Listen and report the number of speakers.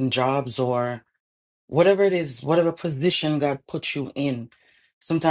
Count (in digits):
1